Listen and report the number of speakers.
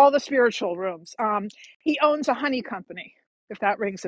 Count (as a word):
one